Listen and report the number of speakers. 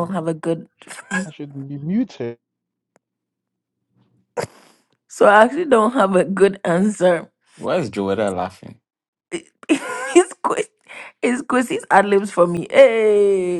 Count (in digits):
3